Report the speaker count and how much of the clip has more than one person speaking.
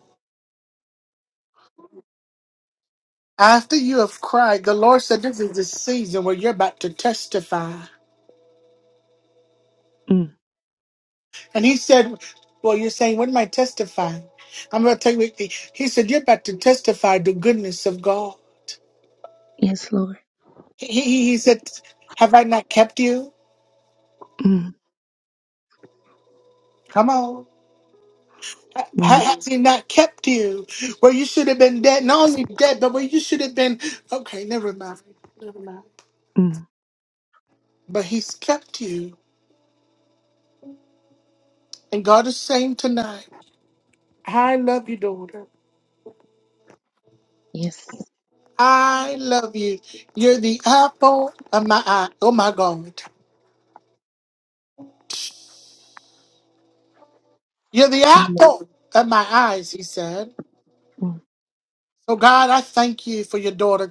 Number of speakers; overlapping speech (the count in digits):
2, about 1%